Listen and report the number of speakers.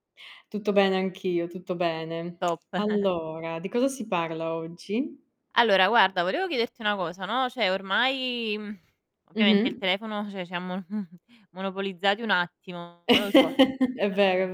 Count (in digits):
2